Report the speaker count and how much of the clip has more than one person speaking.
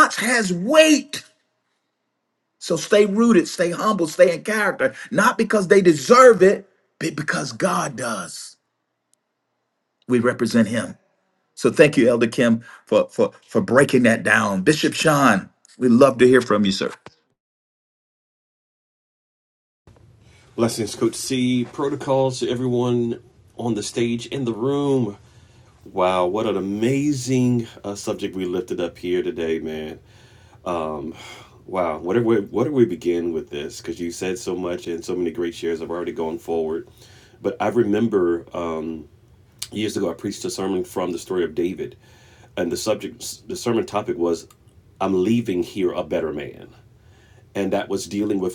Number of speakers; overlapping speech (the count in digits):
2, no overlap